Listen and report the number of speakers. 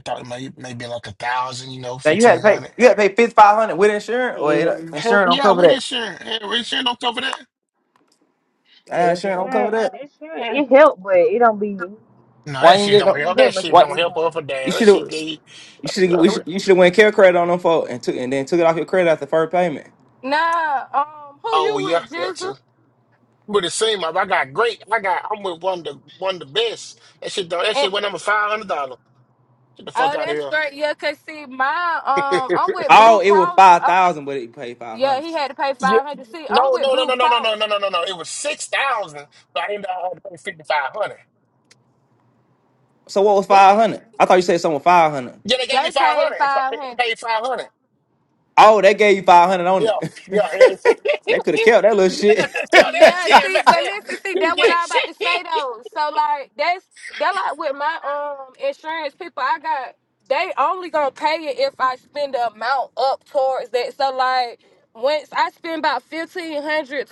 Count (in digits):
4